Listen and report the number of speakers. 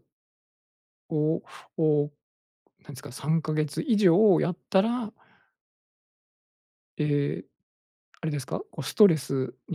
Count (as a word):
one